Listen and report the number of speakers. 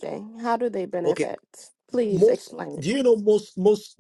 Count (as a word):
two